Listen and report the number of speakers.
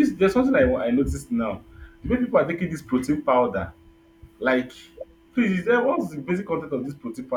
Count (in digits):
1